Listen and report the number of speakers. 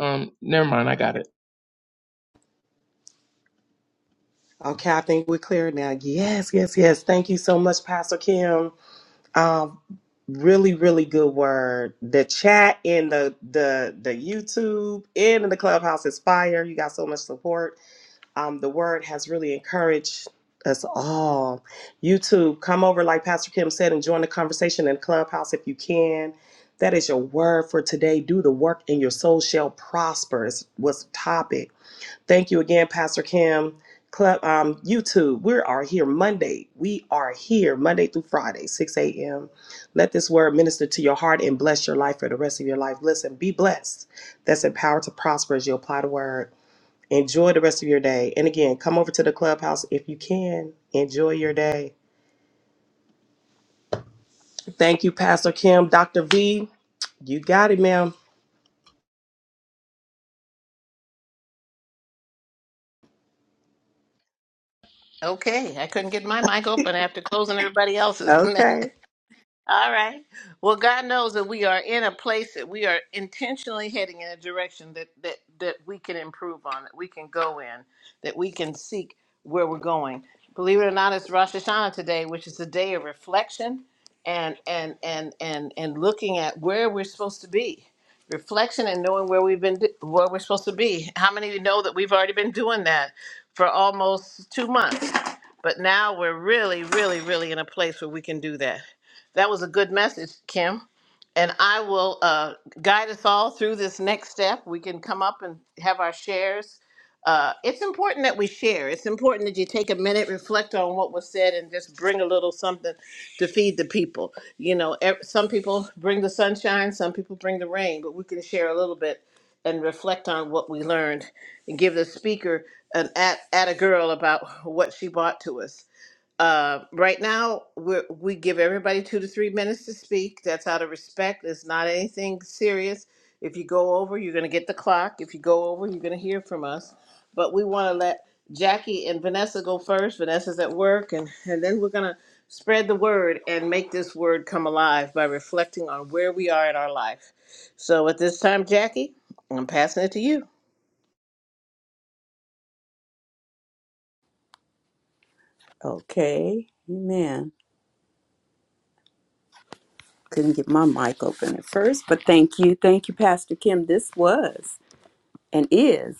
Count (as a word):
four